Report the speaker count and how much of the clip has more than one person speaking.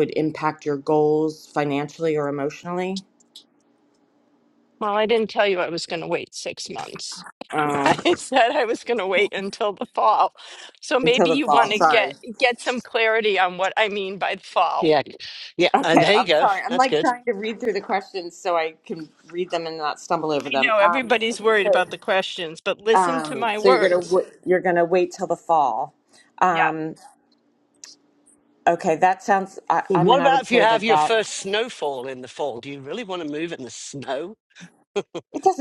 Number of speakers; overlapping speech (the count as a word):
three, about 19%